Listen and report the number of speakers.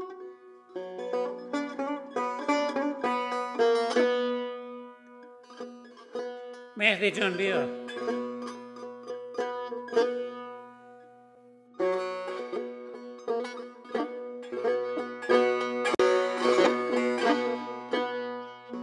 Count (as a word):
one